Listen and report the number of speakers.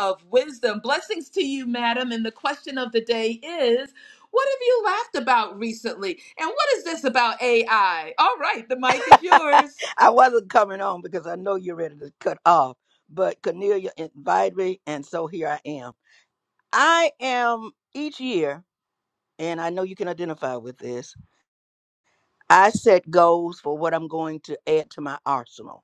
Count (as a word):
two